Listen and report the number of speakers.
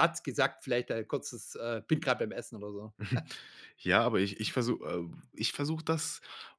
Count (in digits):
2